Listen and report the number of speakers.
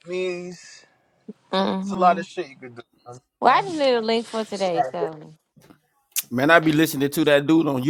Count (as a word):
three